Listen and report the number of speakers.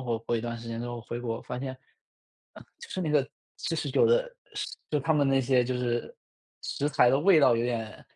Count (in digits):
1